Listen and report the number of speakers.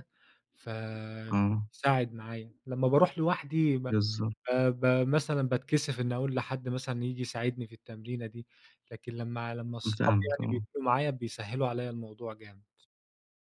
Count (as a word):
two